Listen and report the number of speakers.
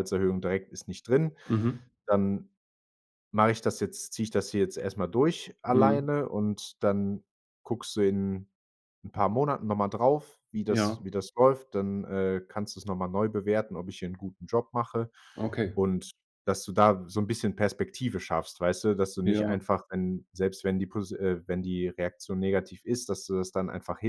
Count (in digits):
2